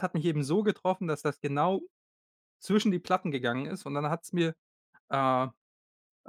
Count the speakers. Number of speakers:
1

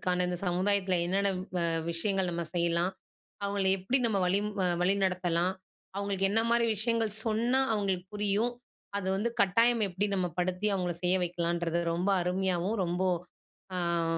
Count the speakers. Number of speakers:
1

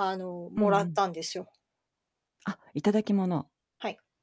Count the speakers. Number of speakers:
2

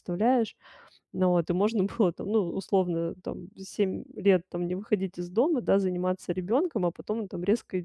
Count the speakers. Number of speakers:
1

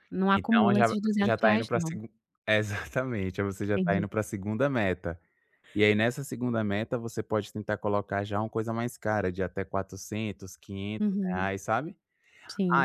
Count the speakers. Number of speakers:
2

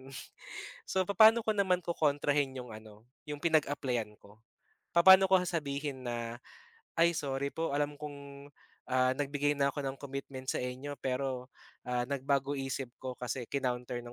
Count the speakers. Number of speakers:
1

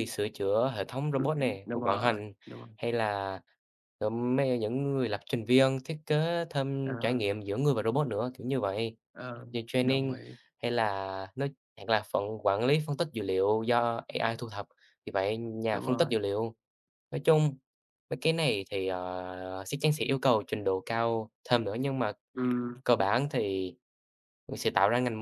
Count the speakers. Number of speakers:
2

